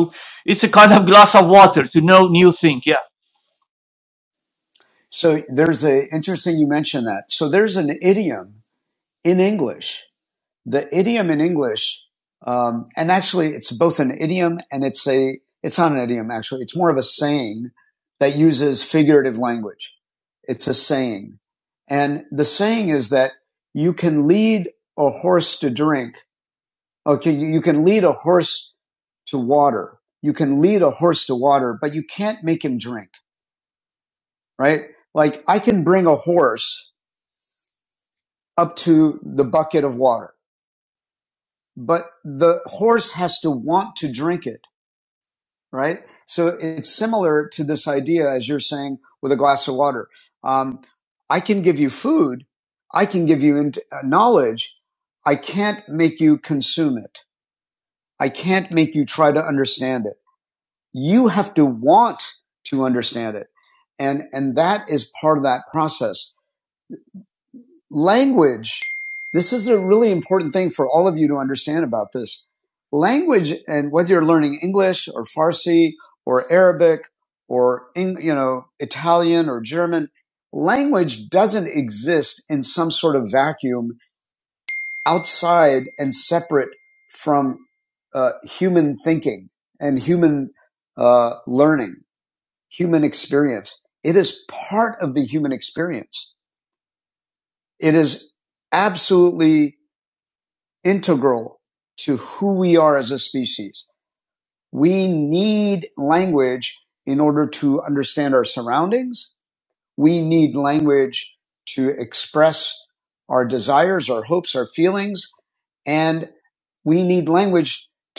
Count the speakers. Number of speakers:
two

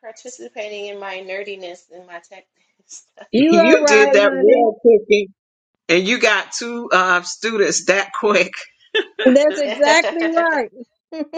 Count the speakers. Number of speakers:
three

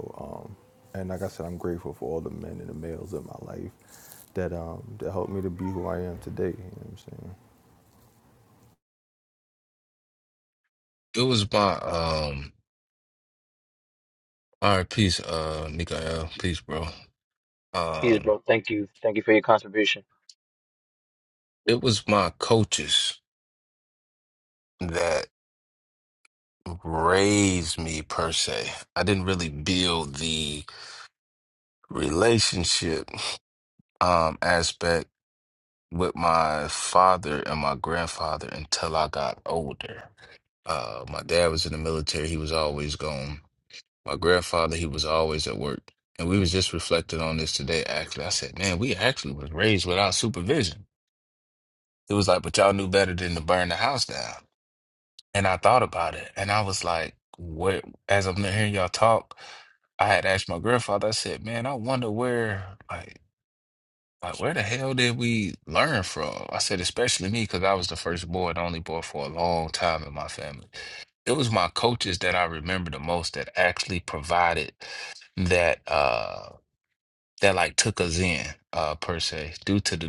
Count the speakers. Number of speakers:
three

